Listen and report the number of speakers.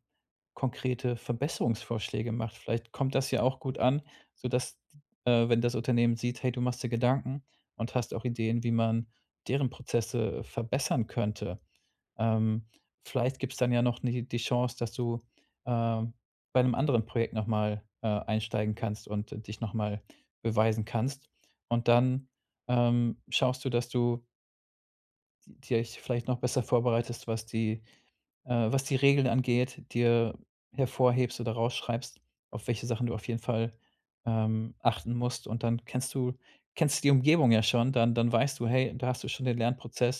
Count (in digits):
1